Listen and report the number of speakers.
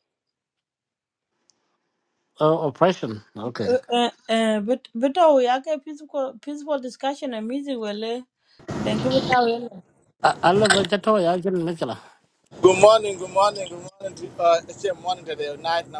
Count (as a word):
three